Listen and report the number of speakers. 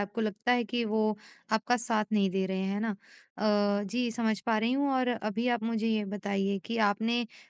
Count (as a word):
one